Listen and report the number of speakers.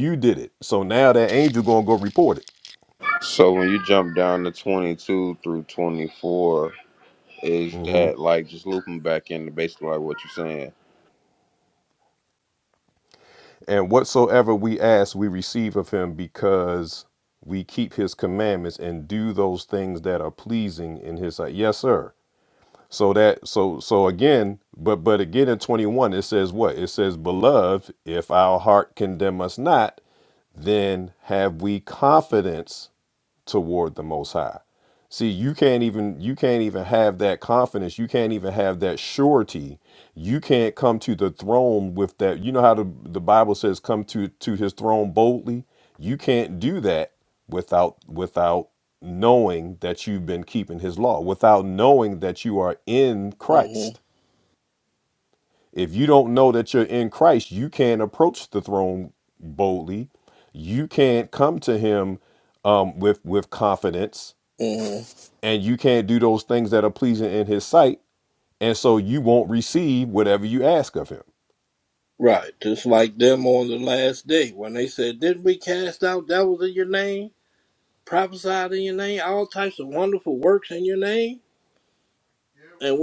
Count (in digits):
3